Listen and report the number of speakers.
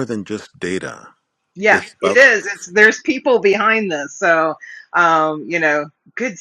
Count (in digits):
2